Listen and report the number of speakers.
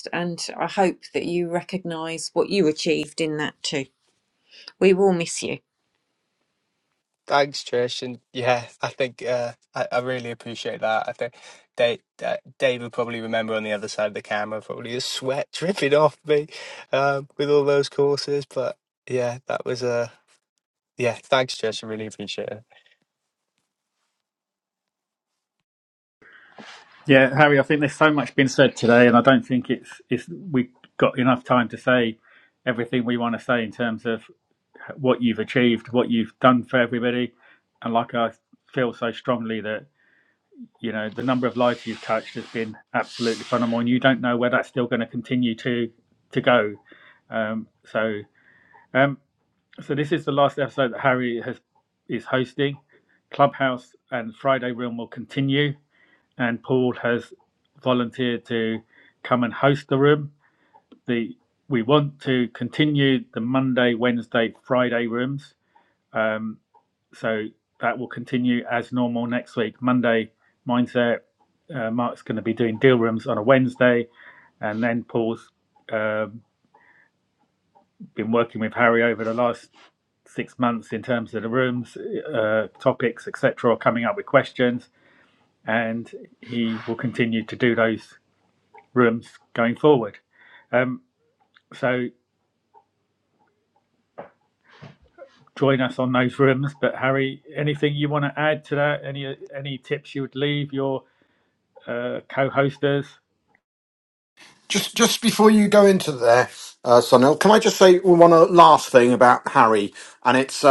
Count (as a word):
four